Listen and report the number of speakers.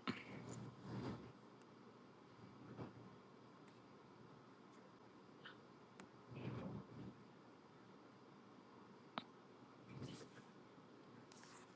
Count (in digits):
0